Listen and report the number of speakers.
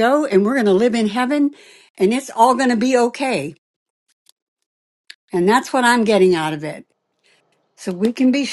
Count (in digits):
1